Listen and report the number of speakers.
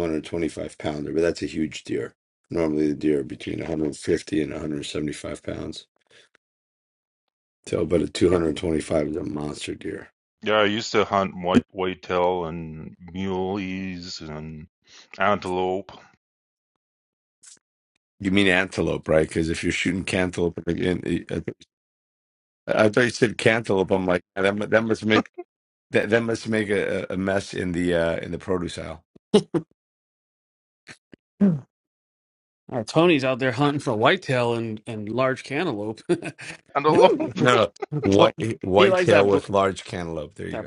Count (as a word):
three